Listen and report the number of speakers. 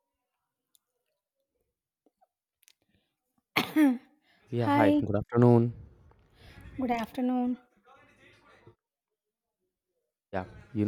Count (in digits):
2